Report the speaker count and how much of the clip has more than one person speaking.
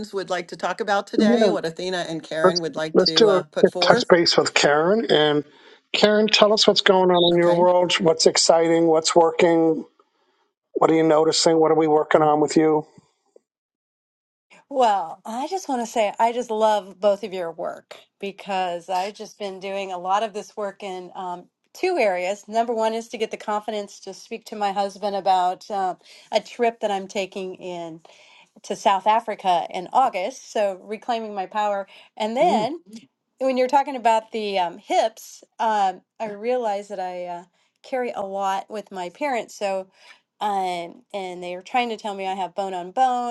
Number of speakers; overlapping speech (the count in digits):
3, about 5%